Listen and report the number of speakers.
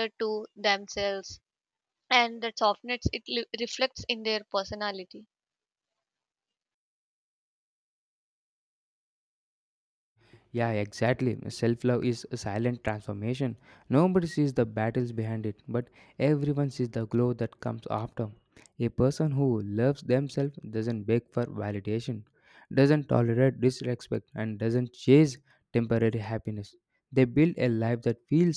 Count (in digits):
2